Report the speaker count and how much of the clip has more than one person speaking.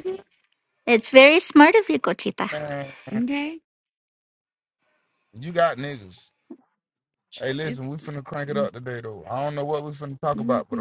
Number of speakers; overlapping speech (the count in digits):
3, about 8%